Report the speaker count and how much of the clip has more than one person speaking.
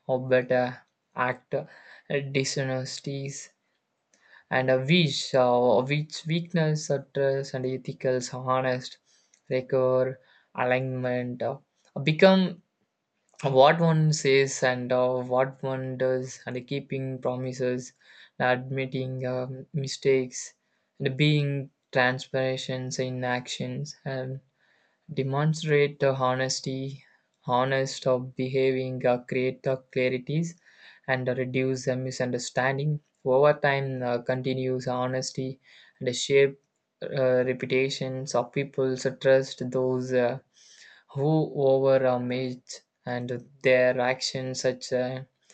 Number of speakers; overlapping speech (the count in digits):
1, no overlap